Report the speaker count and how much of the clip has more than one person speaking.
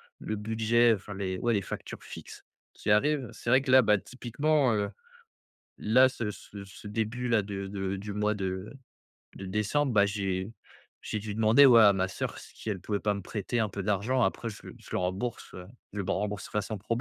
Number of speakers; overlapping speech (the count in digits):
1, no overlap